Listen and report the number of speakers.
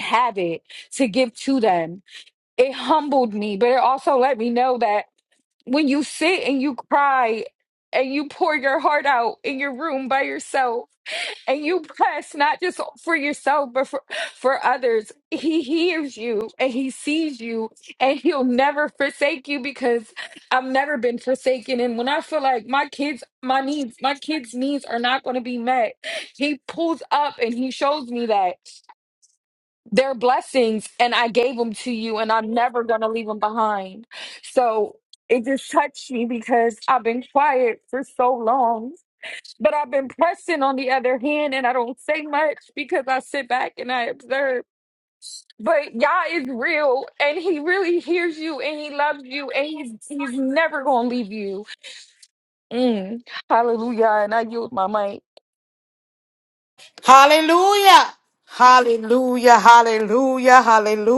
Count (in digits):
2